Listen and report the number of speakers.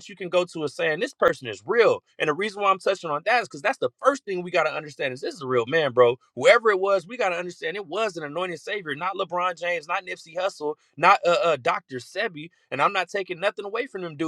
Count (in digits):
1